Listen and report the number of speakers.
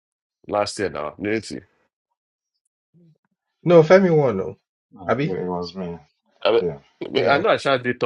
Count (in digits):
3